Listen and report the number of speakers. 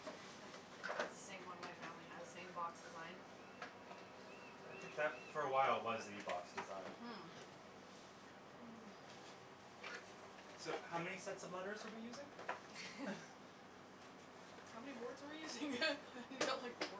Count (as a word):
three